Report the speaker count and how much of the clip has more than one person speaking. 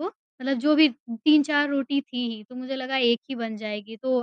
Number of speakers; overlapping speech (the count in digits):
1, no overlap